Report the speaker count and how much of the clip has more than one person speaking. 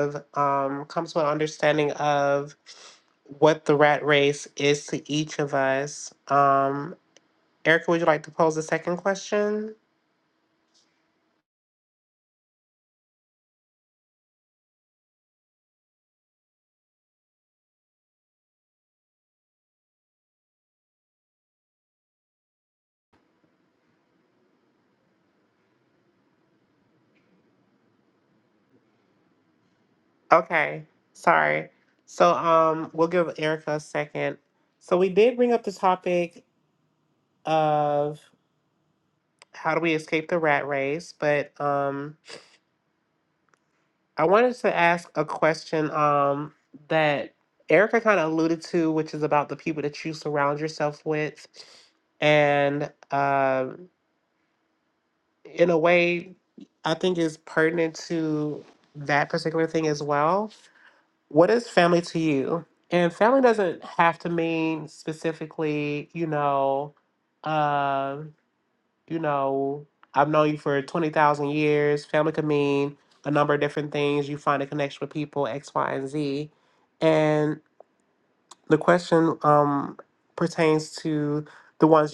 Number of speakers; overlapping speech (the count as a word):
one, no overlap